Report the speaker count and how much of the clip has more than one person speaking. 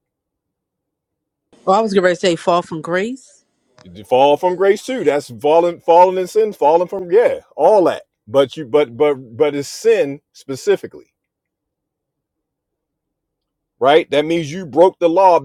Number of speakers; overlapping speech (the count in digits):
2, no overlap